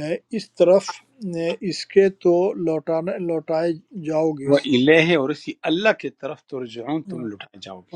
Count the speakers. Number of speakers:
2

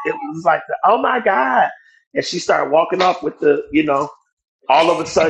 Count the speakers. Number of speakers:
1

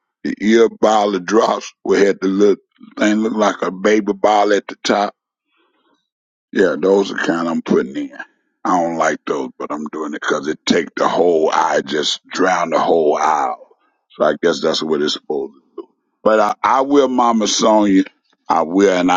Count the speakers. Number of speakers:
1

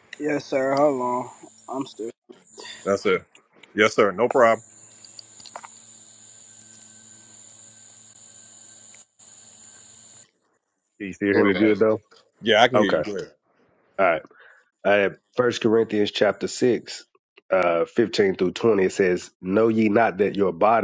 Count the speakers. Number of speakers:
3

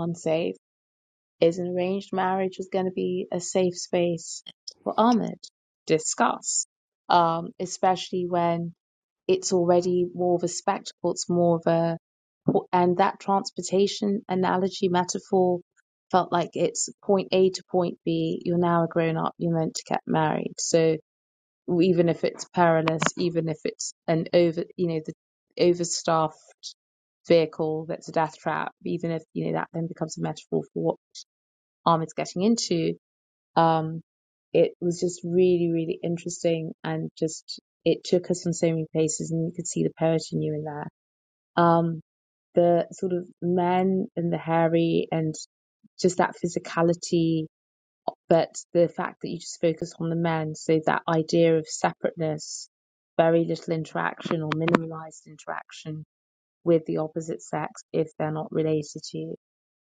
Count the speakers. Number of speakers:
1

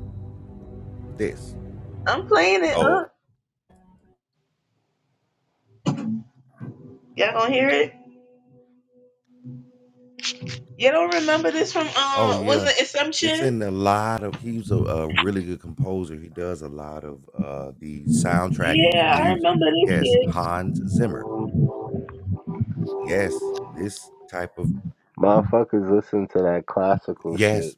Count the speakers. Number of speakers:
3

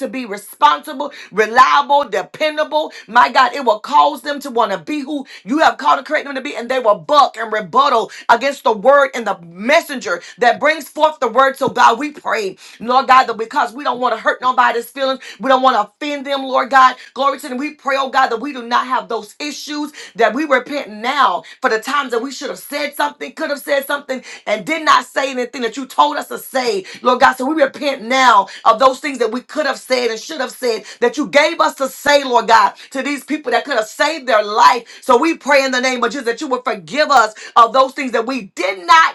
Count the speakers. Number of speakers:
1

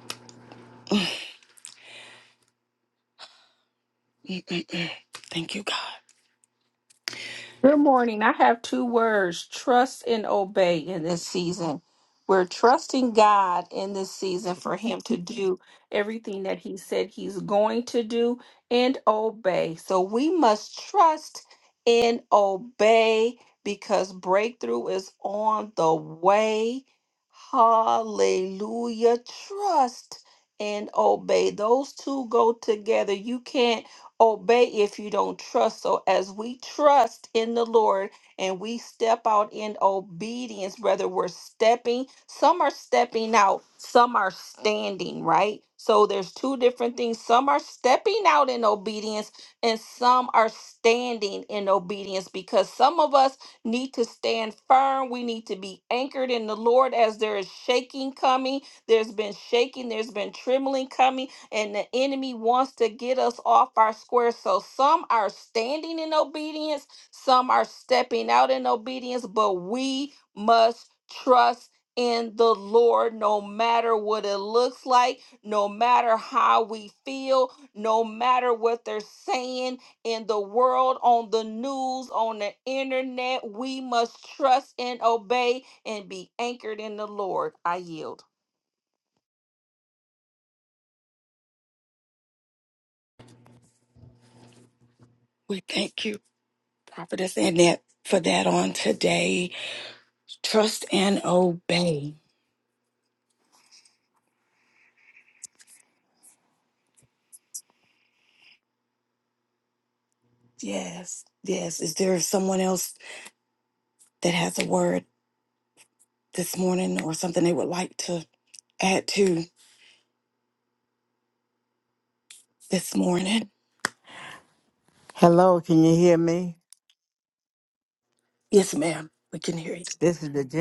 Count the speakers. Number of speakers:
3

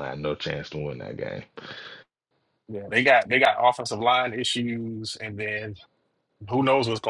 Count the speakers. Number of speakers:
2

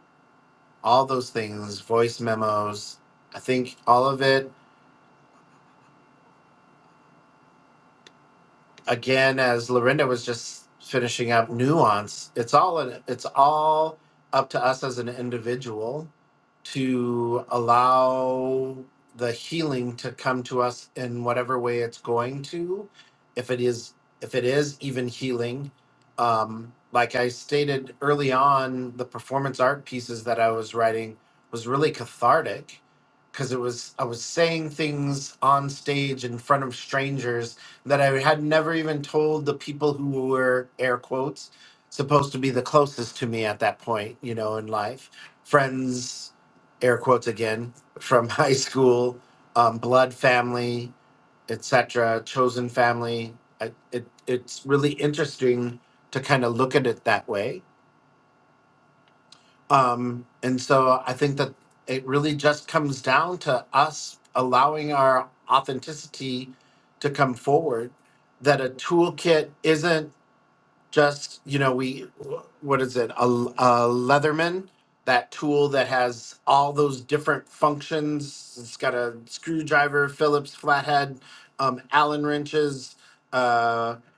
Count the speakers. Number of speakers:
1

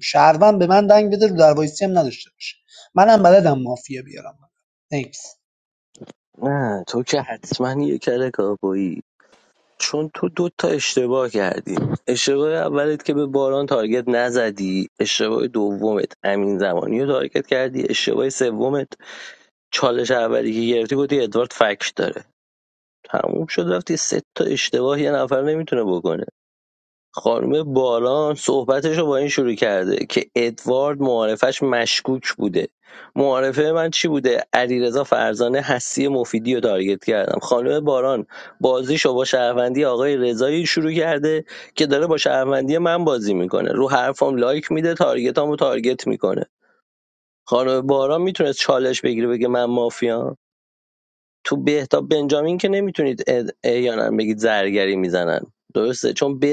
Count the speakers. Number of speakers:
2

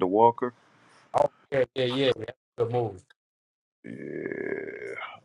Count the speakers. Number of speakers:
2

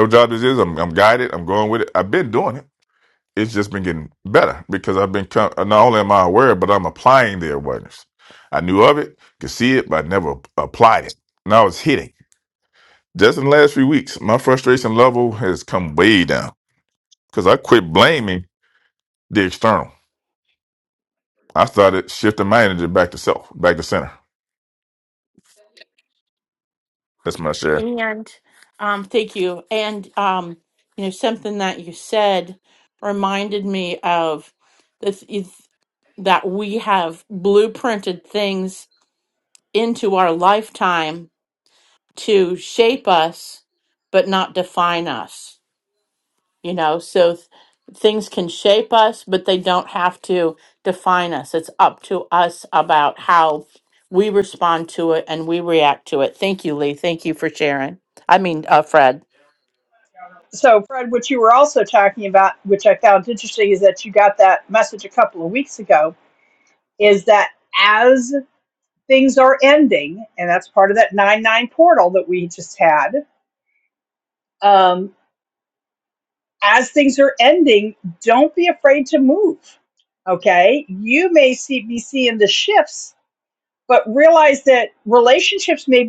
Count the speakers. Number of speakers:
3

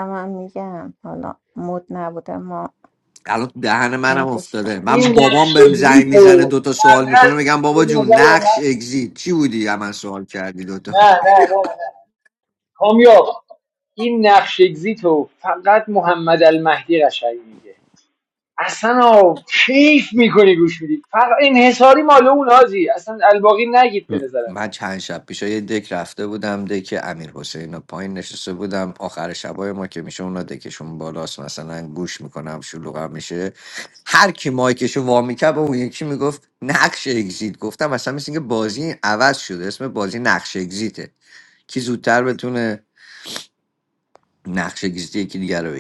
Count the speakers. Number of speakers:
3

